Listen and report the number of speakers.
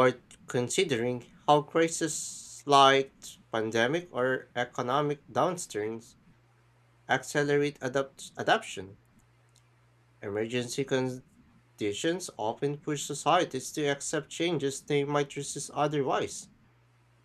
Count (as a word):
one